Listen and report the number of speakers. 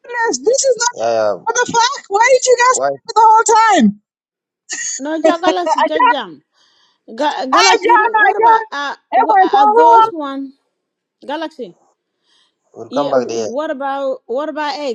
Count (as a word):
three